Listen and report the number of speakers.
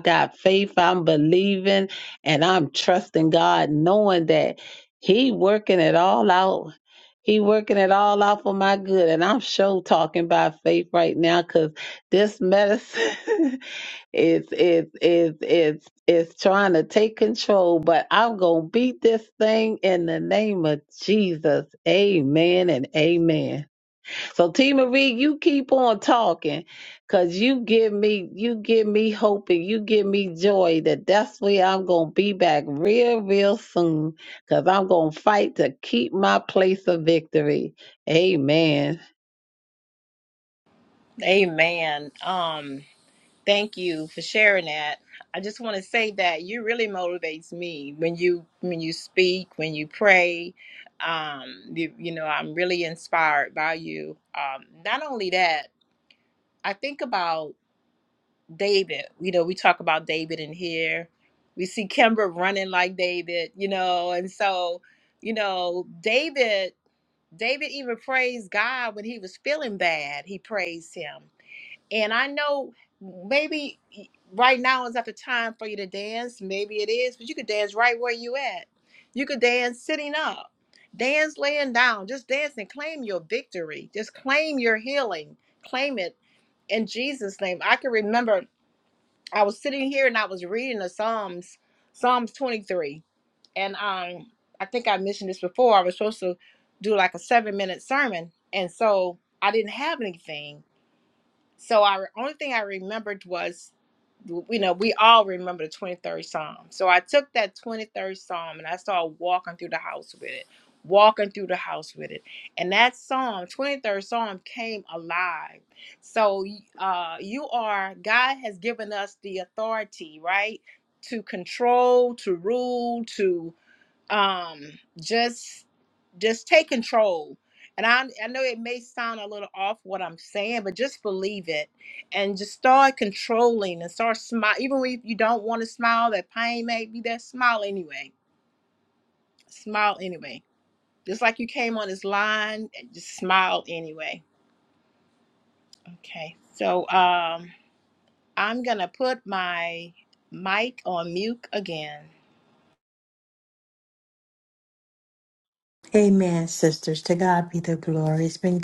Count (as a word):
three